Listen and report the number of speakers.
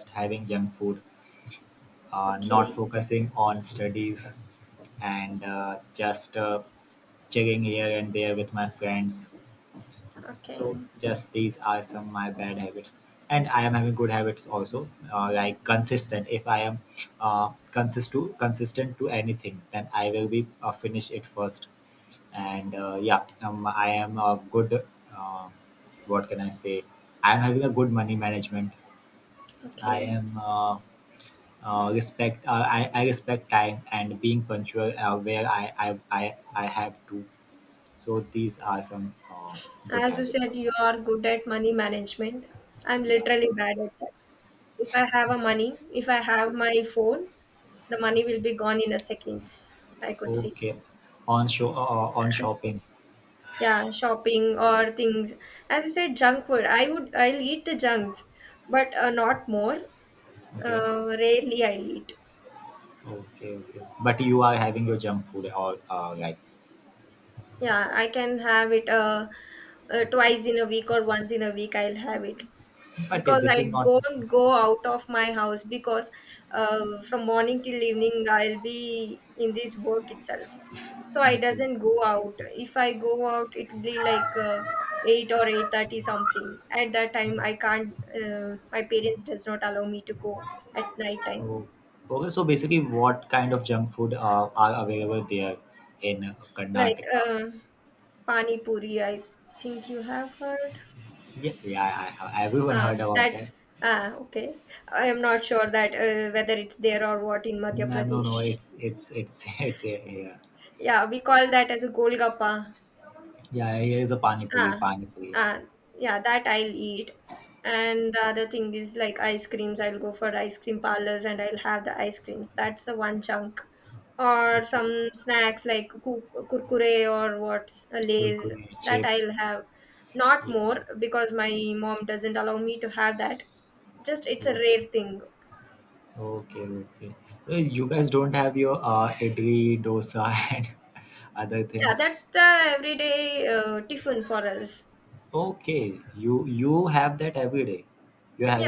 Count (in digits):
2